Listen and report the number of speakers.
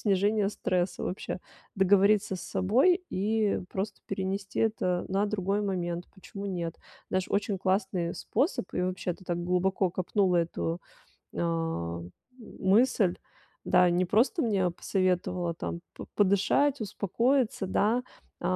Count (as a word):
one